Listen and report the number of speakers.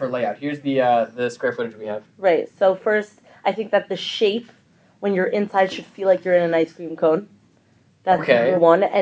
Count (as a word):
two